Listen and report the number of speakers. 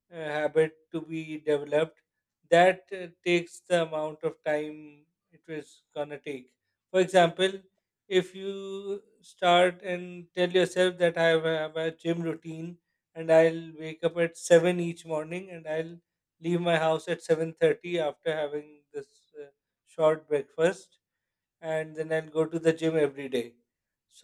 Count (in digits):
1